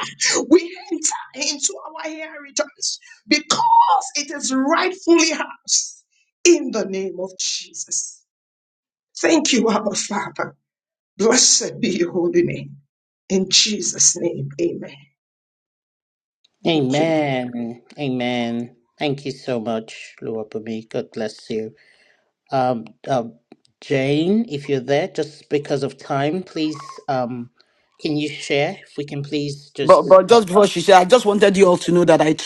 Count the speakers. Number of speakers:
3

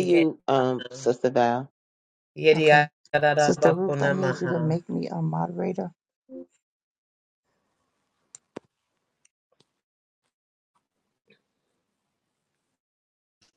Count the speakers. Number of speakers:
3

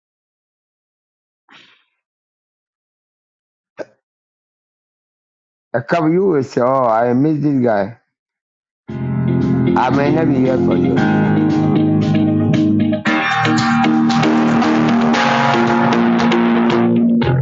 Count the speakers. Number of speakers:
1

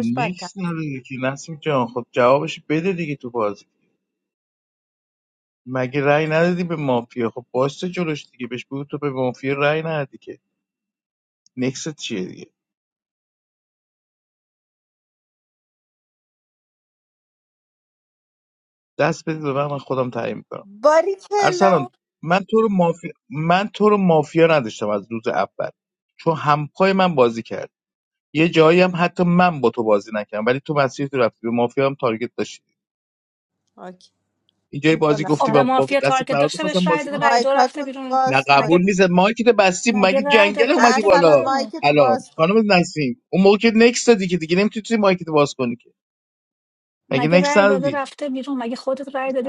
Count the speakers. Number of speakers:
3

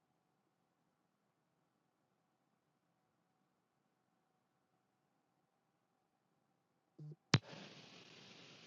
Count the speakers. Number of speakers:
0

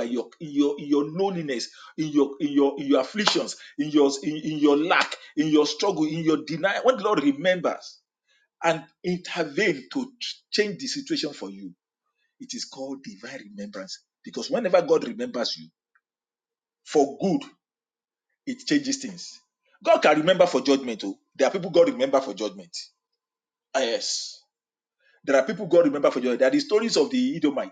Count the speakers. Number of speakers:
1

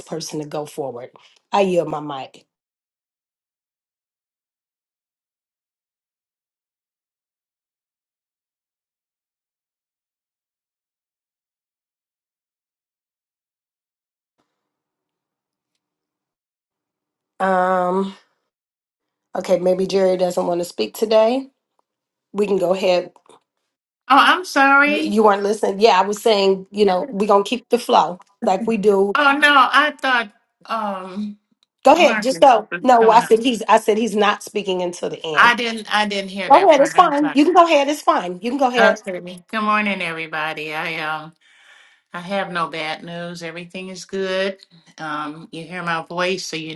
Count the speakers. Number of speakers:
2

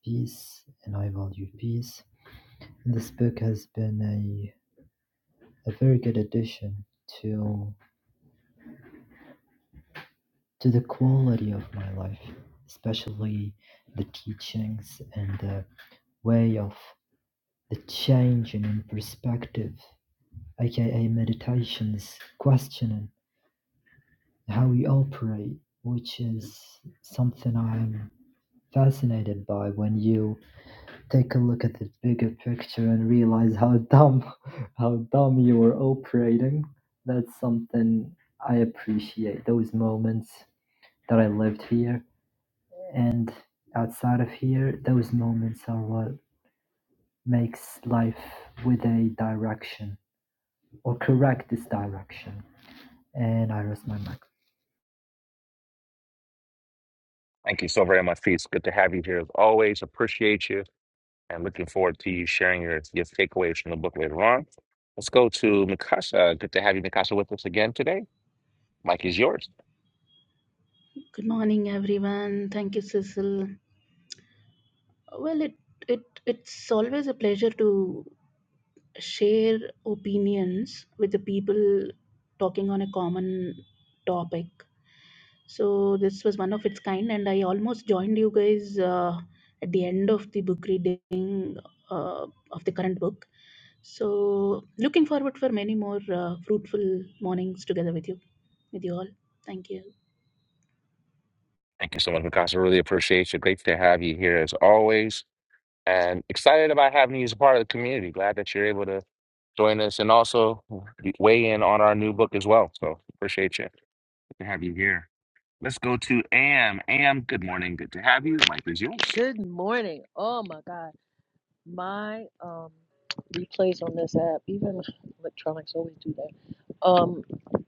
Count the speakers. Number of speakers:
4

